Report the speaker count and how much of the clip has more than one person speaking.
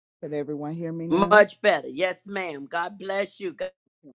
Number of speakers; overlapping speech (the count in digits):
2, about 8%